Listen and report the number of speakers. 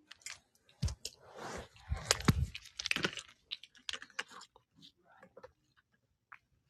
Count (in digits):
0